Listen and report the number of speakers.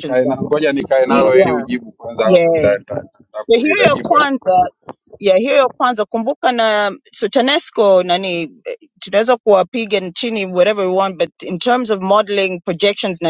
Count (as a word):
two